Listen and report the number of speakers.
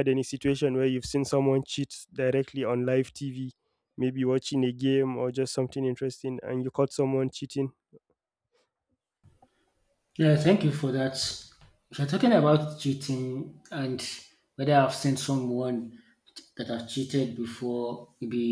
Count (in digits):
2